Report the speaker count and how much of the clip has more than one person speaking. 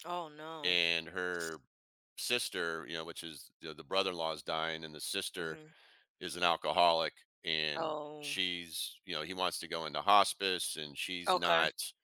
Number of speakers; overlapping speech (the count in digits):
2, about 11%